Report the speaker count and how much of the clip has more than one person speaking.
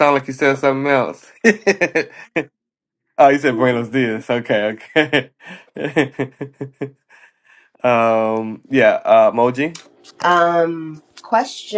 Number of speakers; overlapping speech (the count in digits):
2, no overlap